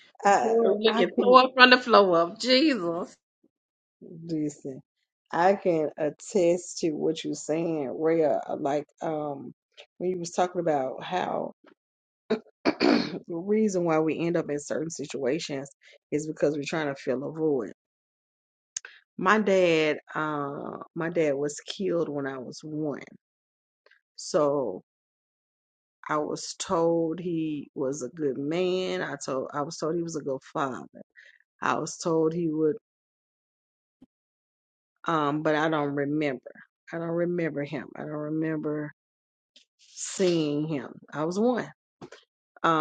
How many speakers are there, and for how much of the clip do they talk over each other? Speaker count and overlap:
two, about 3%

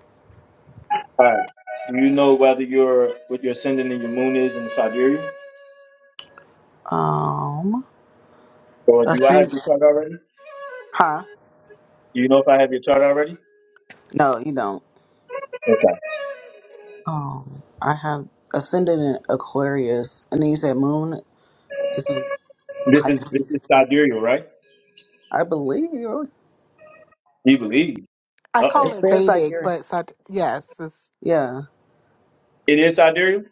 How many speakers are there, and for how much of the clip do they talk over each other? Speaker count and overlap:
three, about 7%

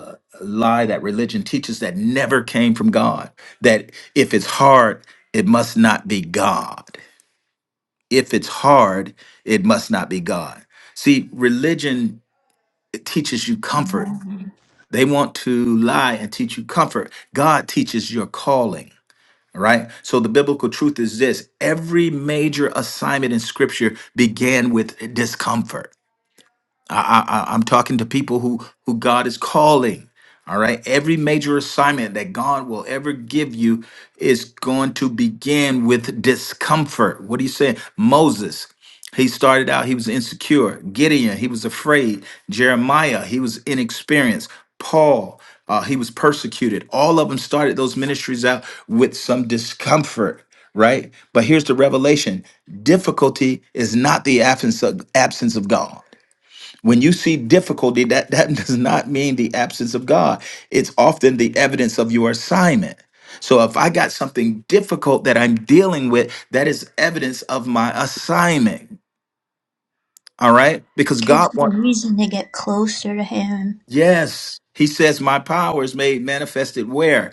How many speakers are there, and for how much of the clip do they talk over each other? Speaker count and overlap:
two, about 1%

